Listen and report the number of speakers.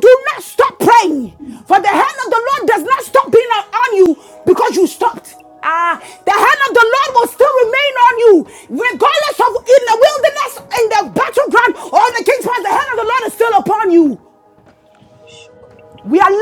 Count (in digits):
1